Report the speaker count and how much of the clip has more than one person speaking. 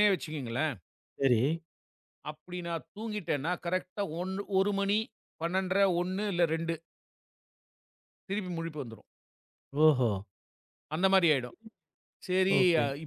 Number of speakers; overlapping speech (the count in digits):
2, under 1%